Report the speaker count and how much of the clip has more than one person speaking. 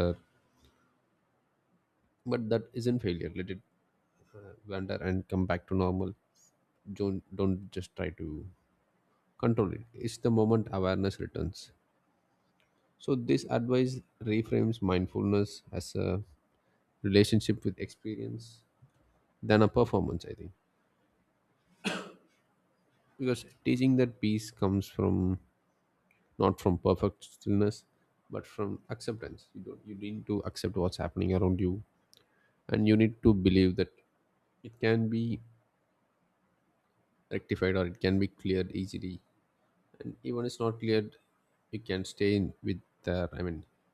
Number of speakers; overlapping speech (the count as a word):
one, no overlap